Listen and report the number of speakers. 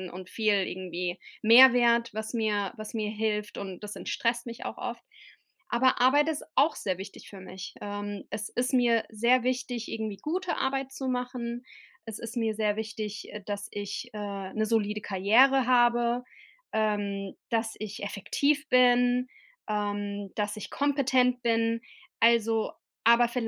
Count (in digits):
1